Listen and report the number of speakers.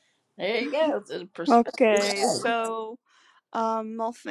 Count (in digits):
2